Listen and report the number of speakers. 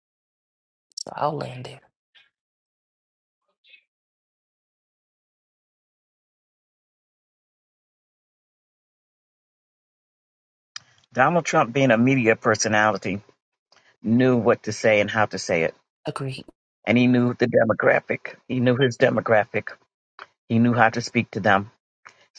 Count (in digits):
2